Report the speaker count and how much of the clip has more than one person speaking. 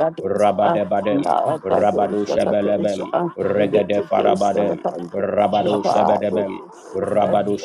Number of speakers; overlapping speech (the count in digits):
2, about 69%